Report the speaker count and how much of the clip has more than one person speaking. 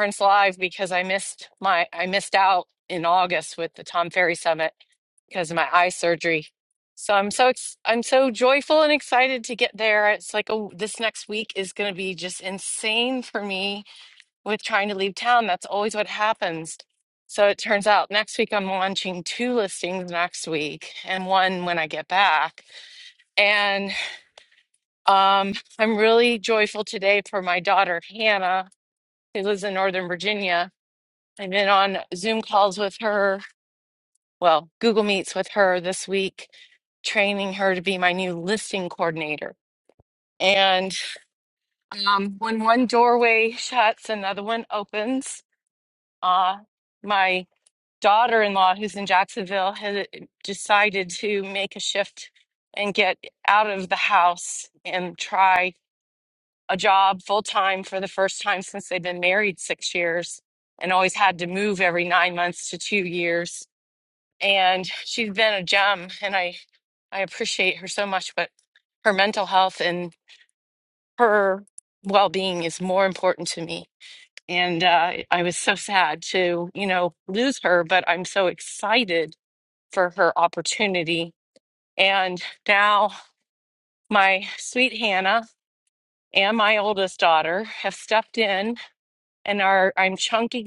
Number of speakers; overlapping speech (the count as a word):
one, no overlap